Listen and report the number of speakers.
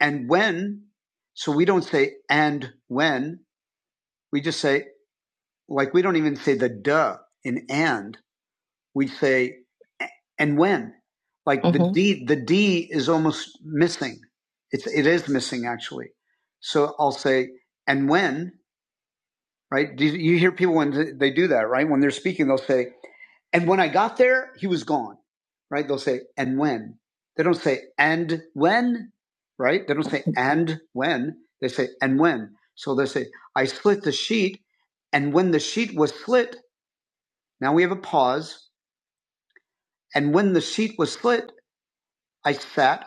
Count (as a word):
one